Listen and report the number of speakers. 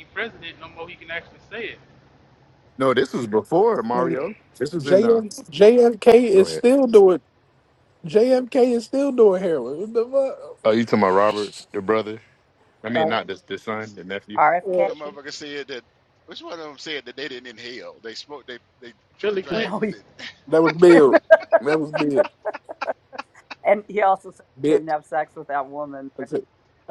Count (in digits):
5